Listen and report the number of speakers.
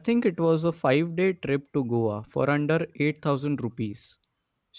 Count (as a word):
one